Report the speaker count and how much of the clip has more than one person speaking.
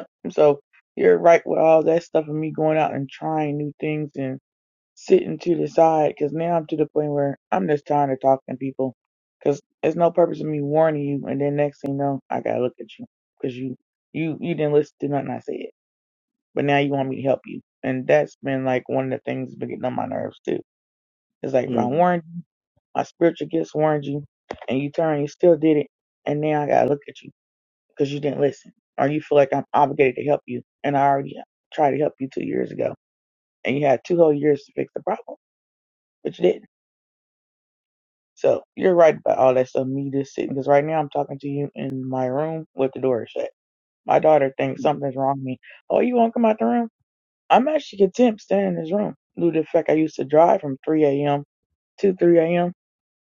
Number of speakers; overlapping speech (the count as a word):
one, no overlap